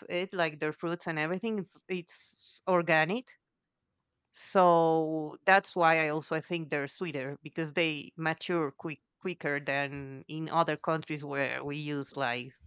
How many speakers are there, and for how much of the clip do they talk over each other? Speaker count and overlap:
one, no overlap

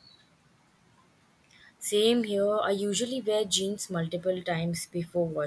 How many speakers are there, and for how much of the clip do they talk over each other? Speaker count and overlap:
one, no overlap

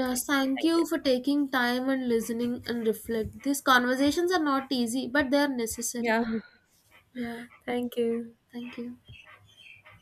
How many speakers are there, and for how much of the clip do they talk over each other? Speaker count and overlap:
two, about 6%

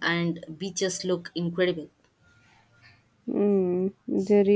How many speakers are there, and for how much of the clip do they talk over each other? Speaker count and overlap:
two, no overlap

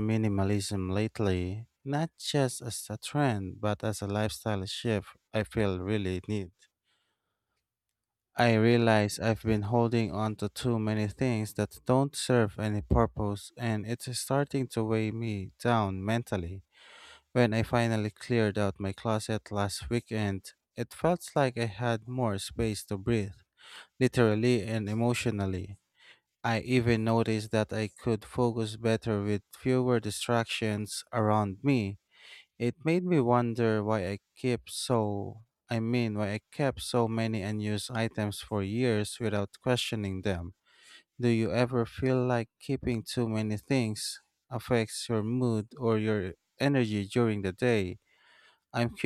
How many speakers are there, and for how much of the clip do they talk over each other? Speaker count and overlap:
one, no overlap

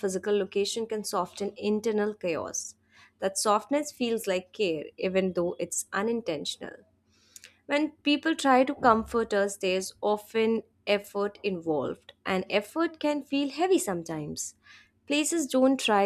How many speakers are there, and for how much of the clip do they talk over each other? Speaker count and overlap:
one, no overlap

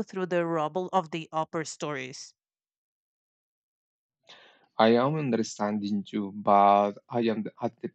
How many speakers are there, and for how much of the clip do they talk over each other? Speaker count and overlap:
two, no overlap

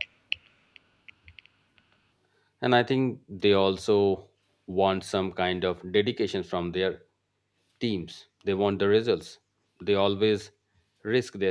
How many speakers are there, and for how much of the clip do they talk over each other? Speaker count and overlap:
one, no overlap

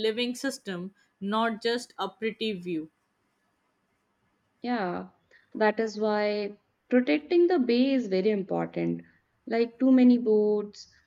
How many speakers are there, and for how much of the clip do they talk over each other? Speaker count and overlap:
two, no overlap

